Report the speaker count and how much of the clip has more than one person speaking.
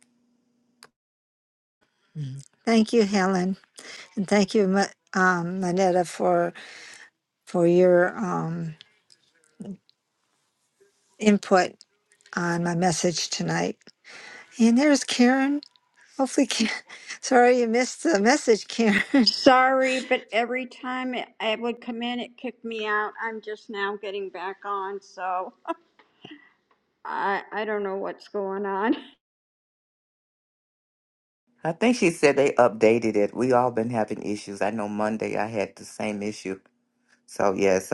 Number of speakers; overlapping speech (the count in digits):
3, no overlap